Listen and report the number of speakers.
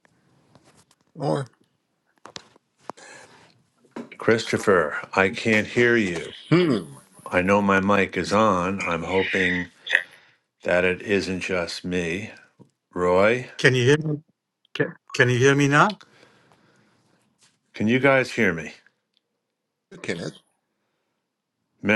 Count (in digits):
3